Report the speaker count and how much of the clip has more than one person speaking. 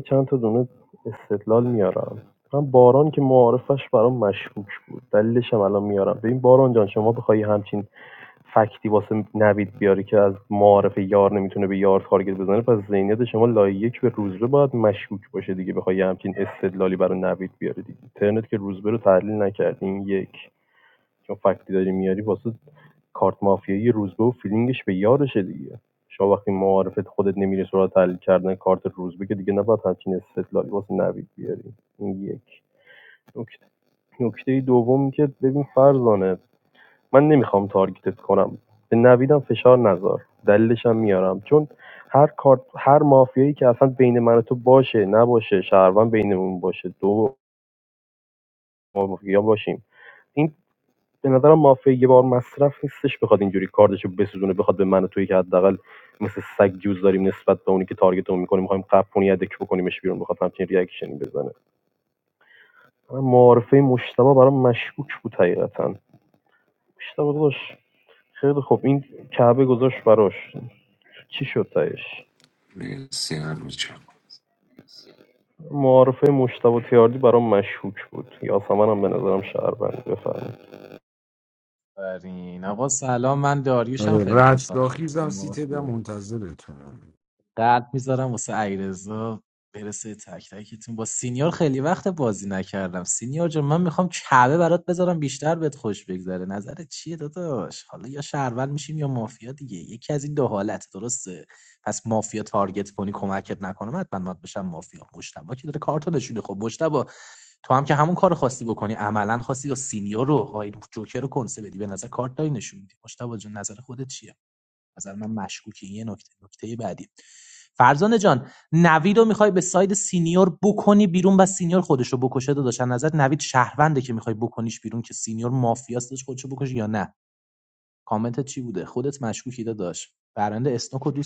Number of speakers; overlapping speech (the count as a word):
four, about 1%